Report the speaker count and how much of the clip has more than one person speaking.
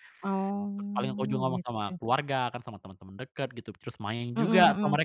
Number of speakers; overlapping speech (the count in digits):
2, about 32%